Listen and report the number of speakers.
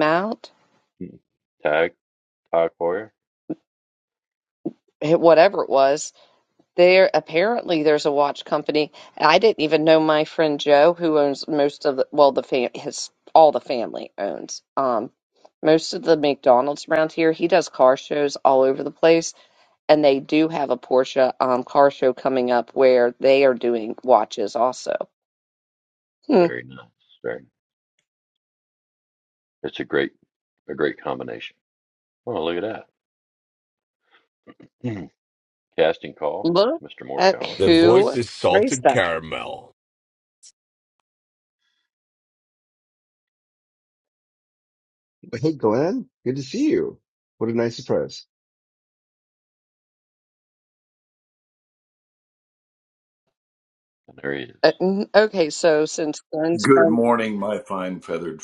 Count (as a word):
five